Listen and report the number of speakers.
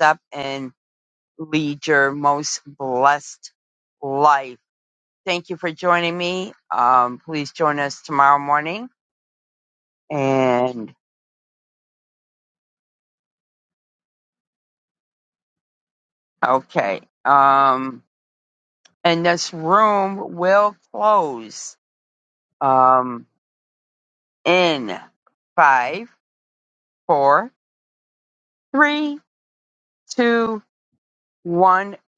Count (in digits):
1